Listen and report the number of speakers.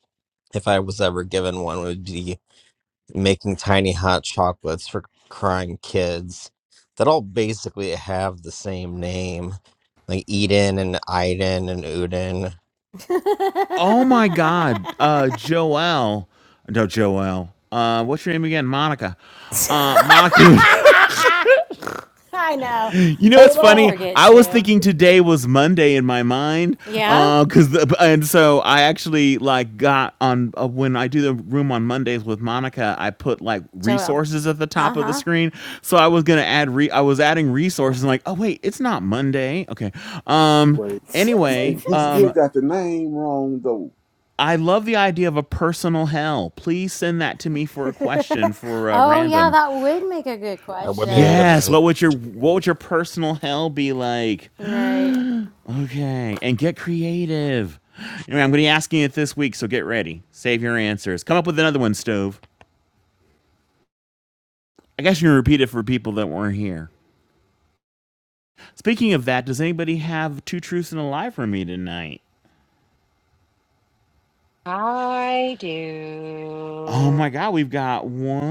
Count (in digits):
5